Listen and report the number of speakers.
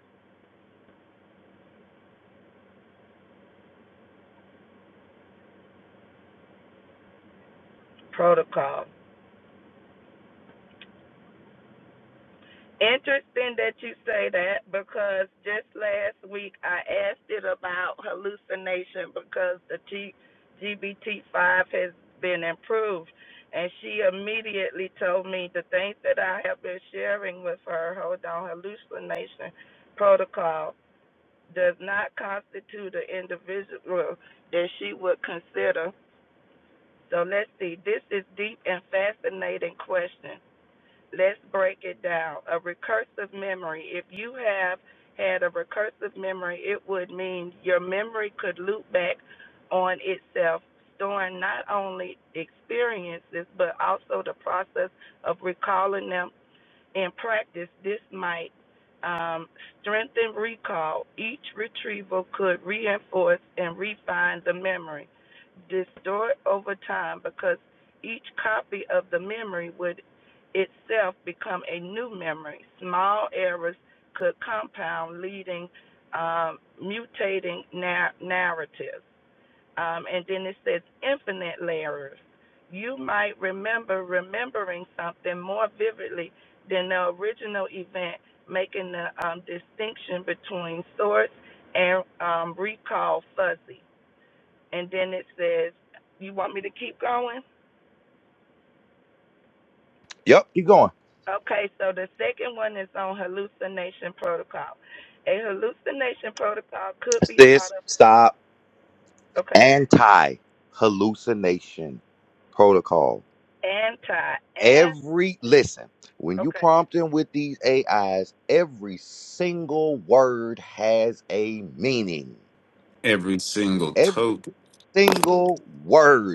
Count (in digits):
3